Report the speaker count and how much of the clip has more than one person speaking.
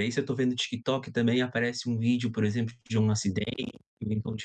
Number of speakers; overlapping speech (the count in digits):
1, no overlap